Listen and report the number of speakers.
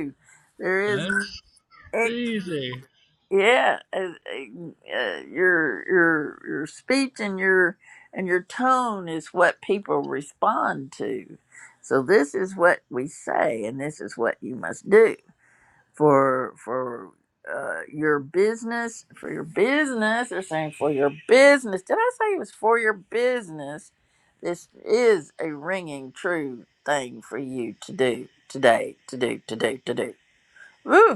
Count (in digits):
2